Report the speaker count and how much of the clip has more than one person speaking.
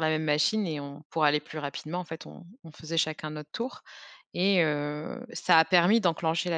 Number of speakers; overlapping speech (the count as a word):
one, no overlap